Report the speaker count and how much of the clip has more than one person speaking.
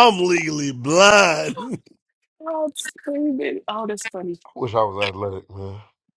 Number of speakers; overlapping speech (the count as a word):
three, no overlap